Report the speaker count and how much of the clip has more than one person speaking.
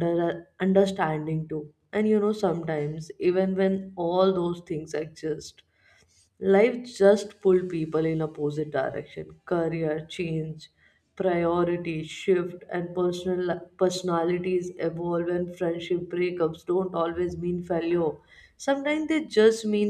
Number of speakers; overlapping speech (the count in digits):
1, no overlap